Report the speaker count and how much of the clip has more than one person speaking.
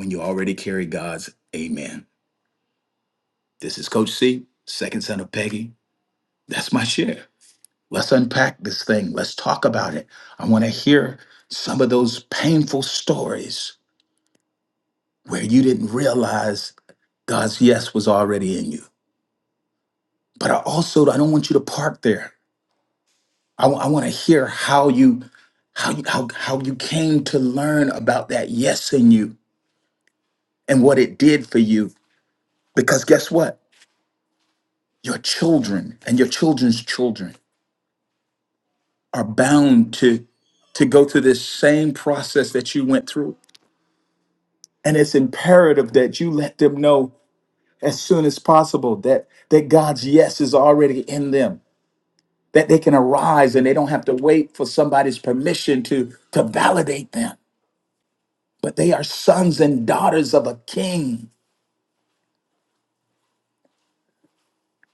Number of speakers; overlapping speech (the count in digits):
1, no overlap